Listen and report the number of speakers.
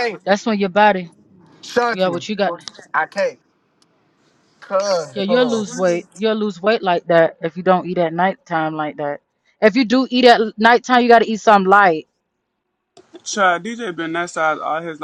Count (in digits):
3